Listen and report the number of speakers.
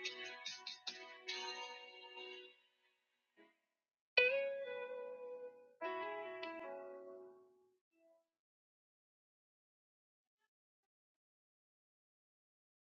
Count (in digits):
0